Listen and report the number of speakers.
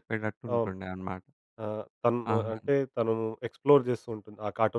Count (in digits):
2